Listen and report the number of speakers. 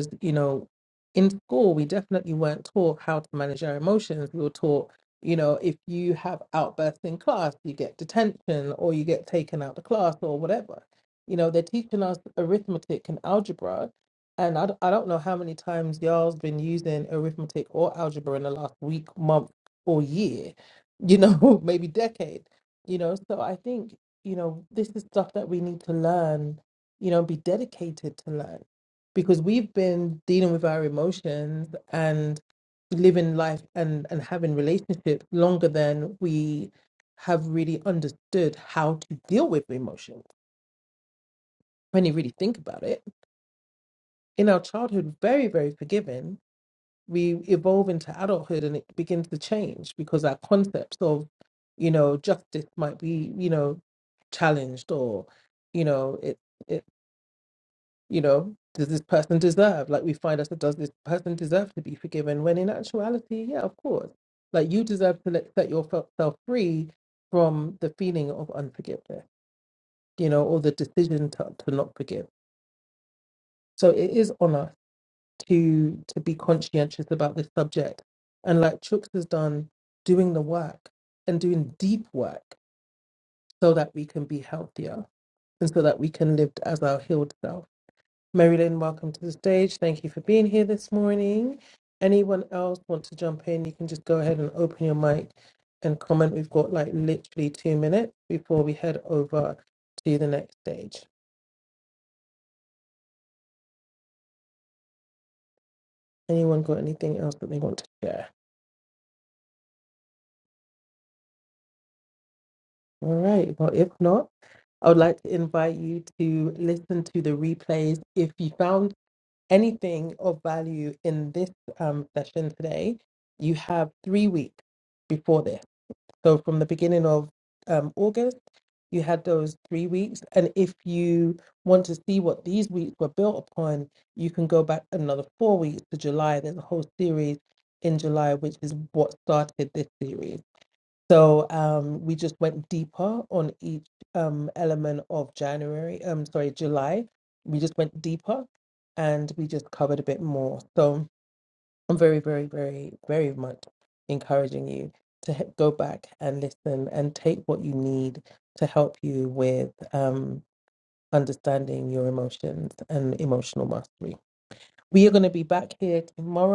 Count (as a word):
one